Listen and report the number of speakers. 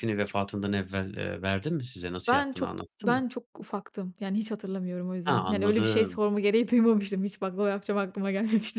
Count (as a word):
two